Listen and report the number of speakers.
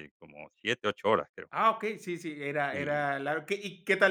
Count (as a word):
two